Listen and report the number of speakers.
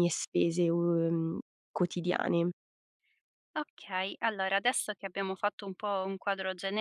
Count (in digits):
2